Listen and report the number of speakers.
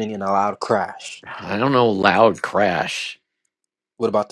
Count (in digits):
2